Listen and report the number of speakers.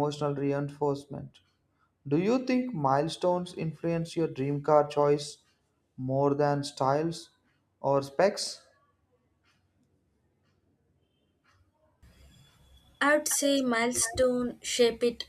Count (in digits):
2